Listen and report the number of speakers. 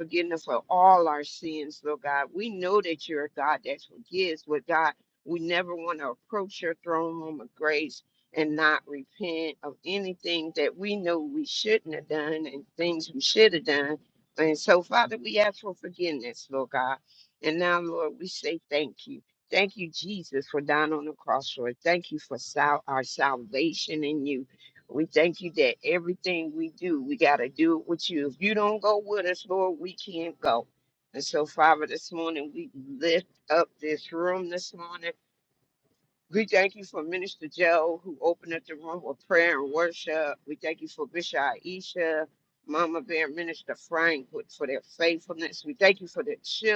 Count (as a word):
one